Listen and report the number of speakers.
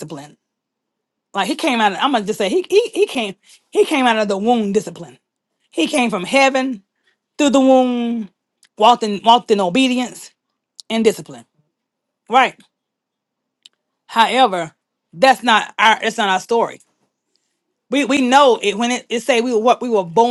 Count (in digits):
1